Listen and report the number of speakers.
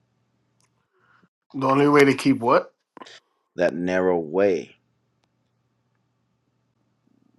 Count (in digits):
2